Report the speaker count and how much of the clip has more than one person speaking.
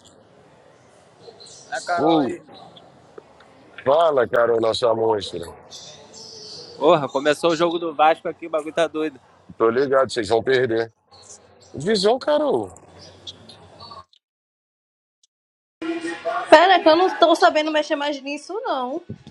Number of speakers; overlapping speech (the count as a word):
three, about 2%